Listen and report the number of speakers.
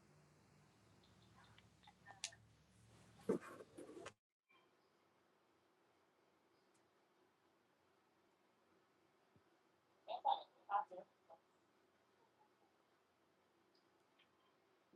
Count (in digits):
0